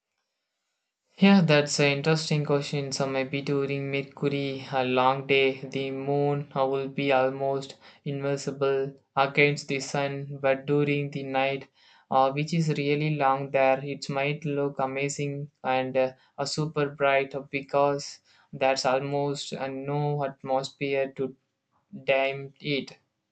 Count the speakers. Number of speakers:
1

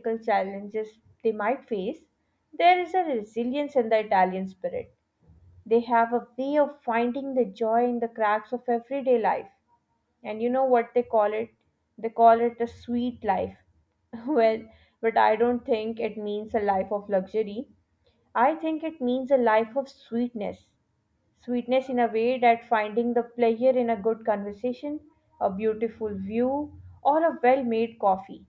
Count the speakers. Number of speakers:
1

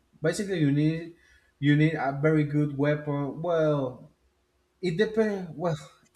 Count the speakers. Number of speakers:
1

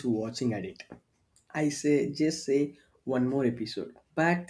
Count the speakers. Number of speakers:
1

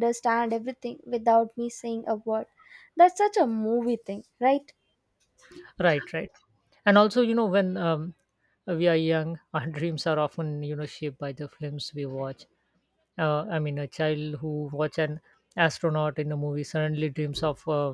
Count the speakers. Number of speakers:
2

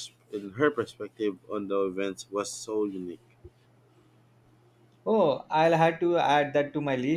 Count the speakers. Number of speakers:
2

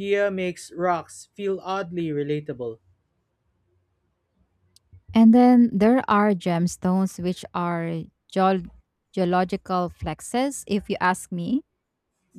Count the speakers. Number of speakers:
2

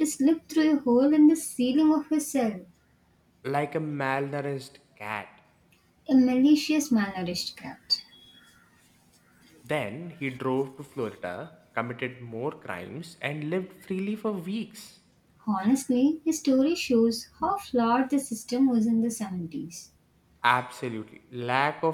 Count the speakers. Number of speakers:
2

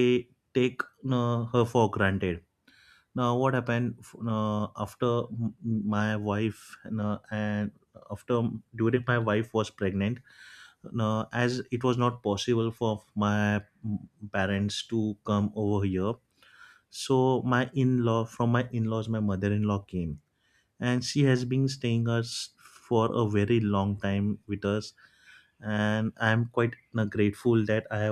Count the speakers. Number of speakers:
1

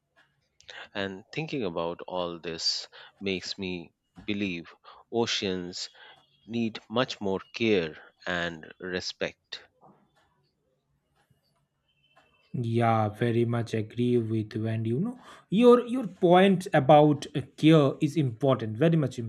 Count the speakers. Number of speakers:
2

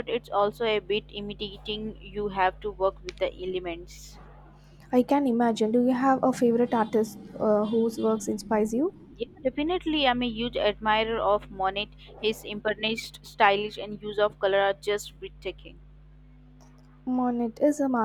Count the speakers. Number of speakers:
2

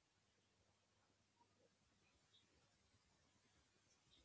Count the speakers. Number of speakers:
0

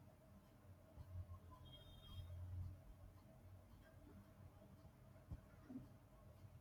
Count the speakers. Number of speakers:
0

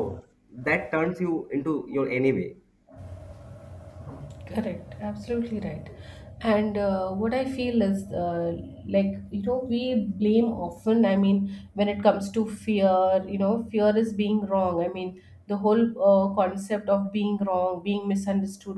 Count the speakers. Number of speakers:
2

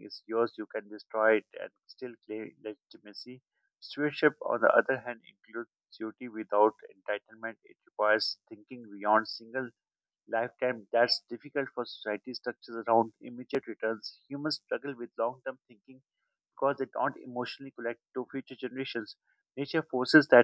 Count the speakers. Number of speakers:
1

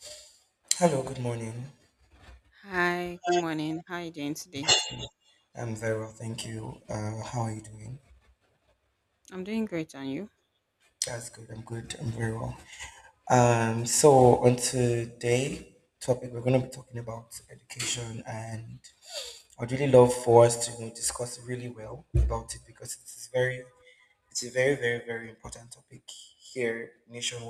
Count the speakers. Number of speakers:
2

